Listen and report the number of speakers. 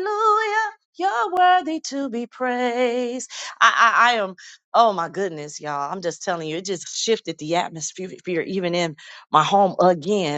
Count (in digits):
1